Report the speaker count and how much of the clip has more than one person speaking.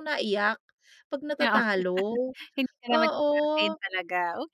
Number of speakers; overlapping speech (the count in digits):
2, about 20%